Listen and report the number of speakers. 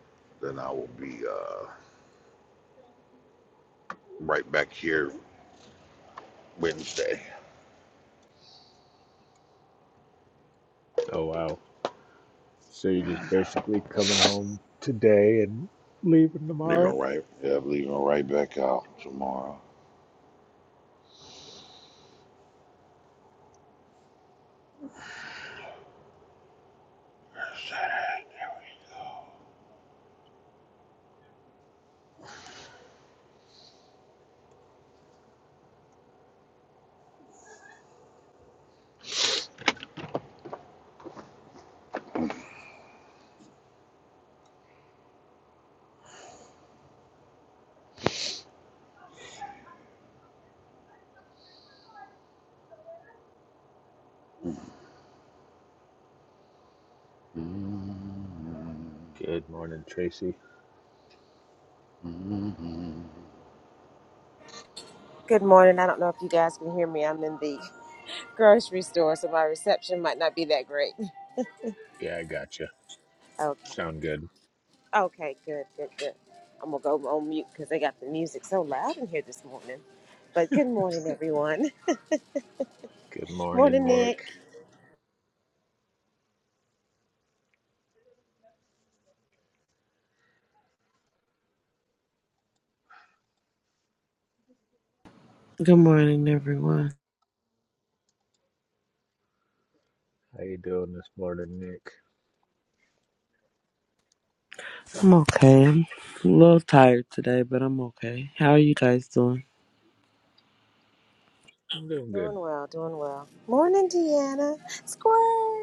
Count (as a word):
four